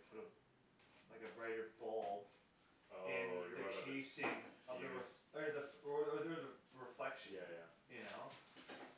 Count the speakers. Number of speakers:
two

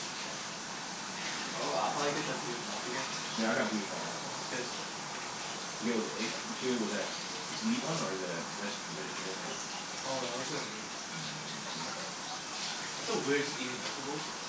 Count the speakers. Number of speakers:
two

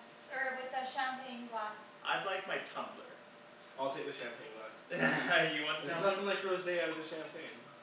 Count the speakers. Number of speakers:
three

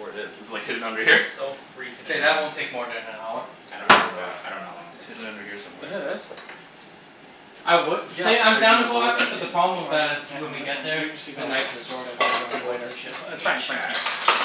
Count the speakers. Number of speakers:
four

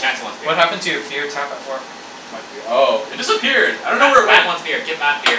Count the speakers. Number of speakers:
three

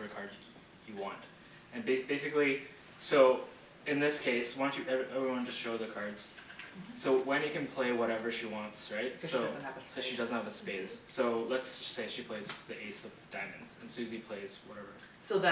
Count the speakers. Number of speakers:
two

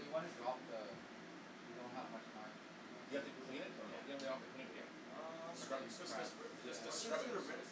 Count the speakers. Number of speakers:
three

